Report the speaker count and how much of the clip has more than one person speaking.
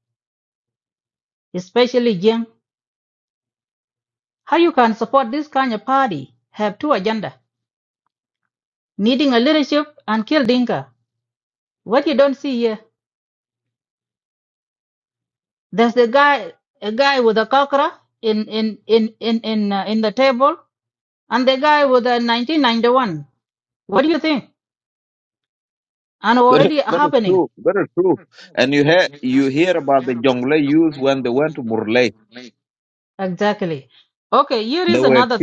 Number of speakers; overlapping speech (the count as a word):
two, about 4%